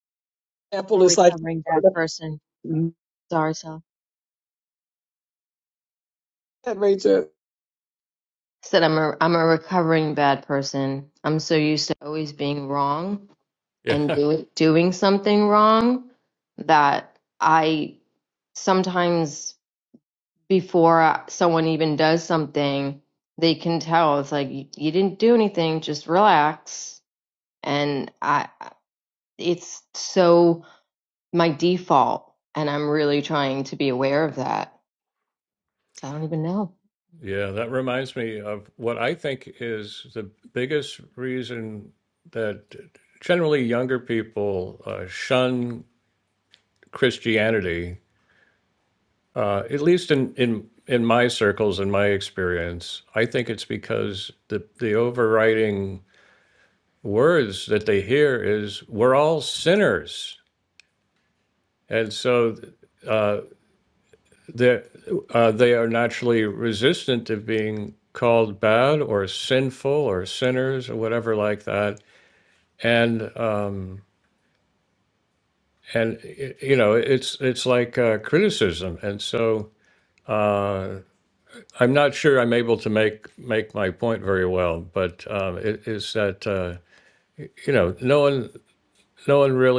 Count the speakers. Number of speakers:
three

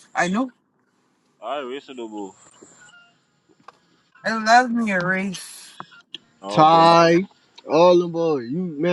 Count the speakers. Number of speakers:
three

